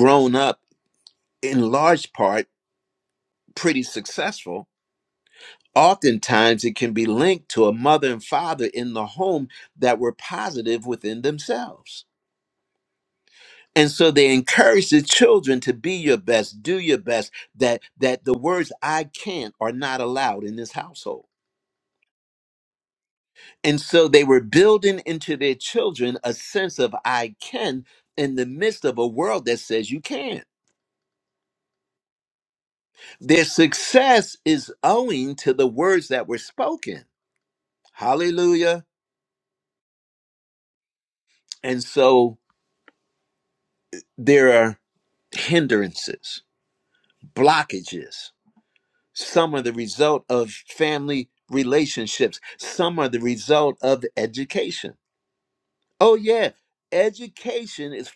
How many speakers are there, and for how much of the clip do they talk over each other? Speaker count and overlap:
1, no overlap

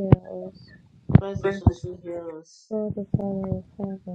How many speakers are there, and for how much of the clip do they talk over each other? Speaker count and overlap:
2, no overlap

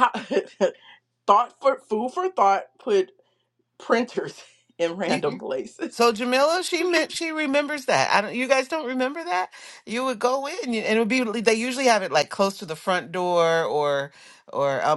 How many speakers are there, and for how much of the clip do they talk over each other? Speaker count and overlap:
2, no overlap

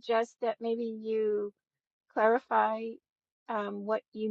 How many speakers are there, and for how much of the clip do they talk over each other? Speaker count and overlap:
1, no overlap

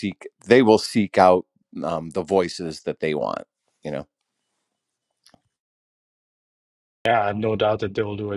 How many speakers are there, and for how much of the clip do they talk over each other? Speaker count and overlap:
2, no overlap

